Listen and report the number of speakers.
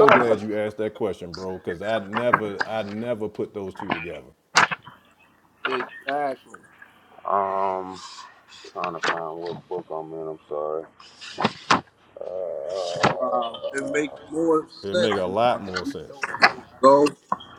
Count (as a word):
three